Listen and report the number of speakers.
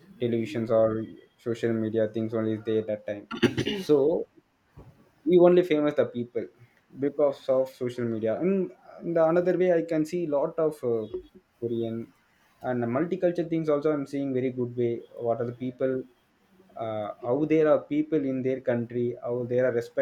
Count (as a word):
one